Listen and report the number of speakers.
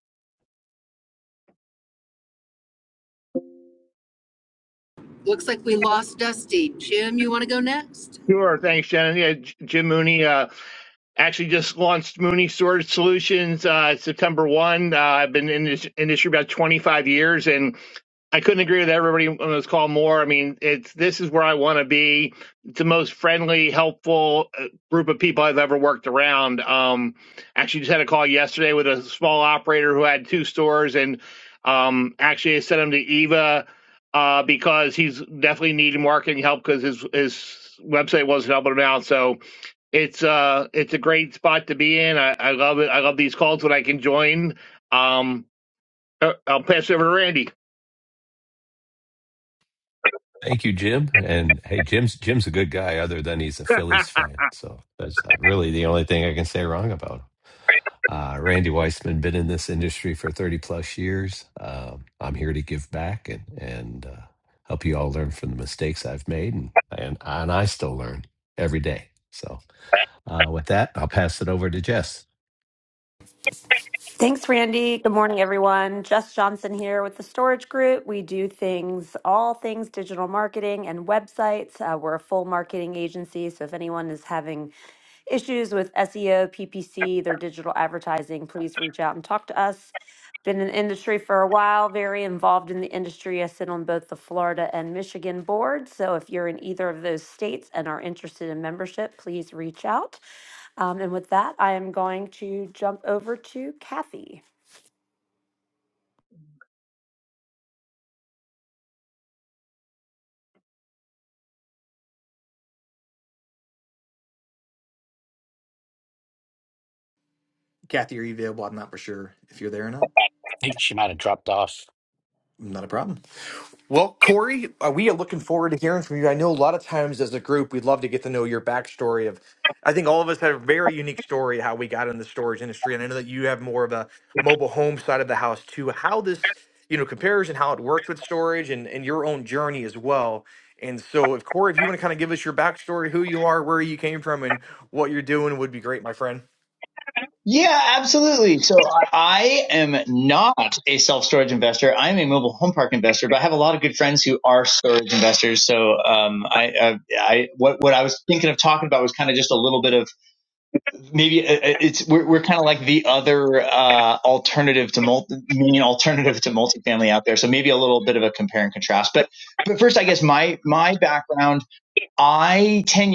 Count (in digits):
7